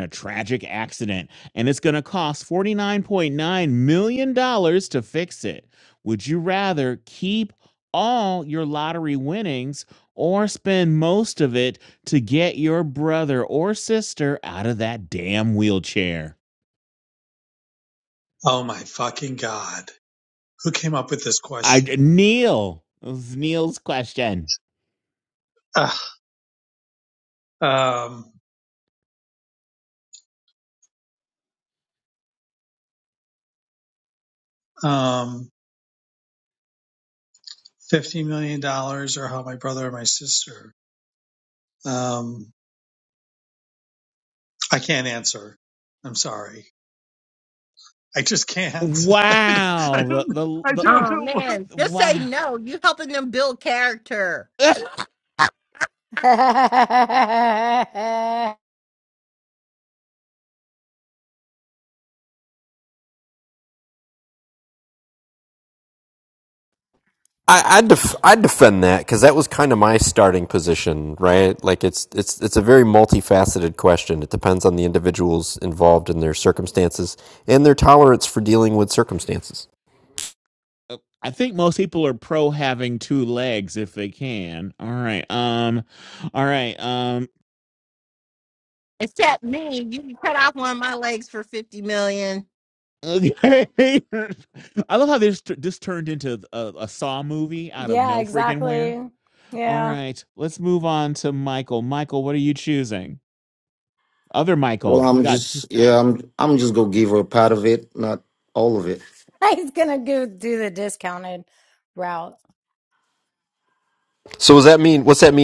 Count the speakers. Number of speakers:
six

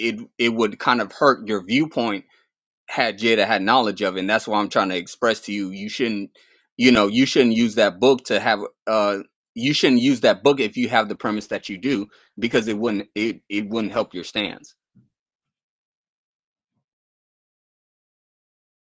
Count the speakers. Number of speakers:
one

